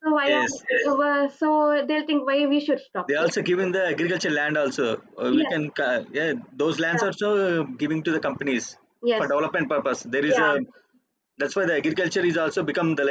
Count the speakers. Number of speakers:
two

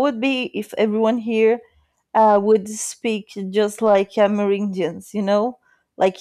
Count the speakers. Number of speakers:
one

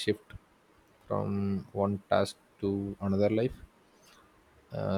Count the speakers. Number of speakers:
one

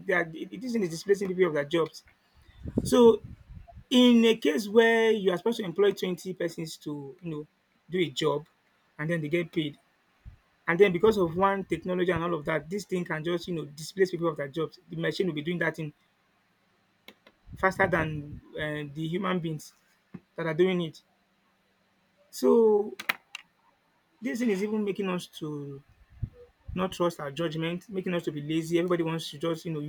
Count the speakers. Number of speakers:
one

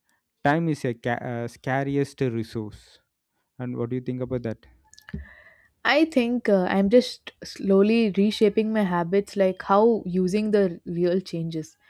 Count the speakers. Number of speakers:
two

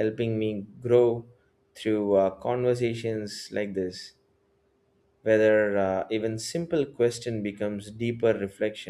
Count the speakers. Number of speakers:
one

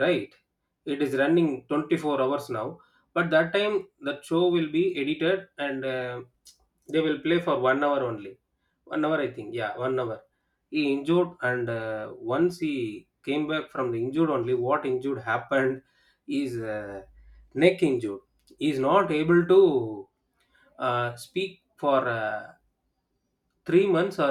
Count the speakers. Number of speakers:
one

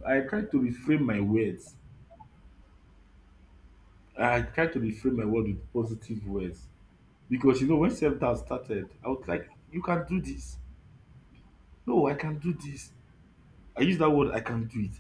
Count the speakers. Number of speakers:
one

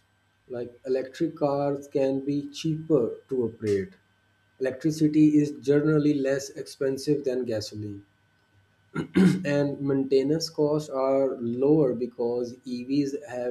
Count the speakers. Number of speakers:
one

